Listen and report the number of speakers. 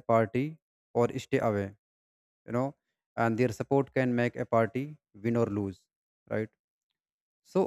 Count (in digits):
1